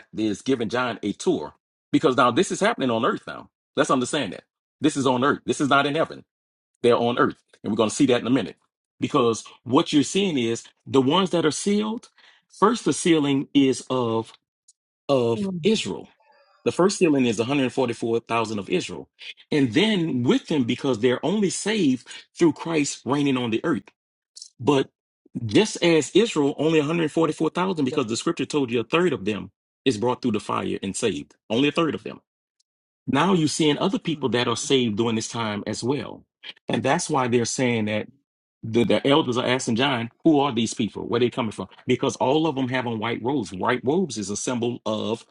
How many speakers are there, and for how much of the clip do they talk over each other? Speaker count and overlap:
1, no overlap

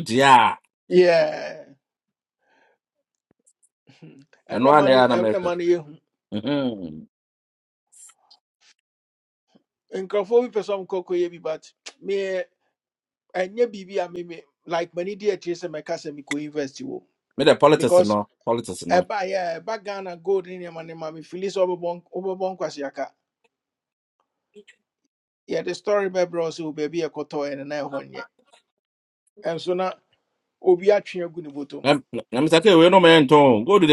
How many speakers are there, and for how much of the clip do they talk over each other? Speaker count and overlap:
2, about 4%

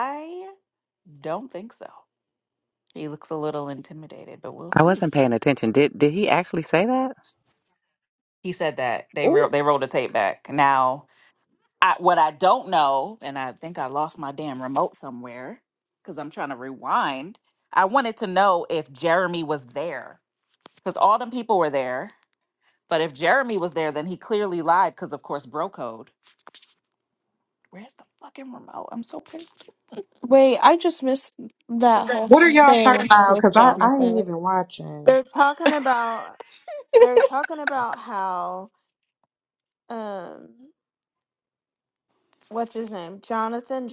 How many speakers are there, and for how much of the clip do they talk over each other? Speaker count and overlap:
5, about 5%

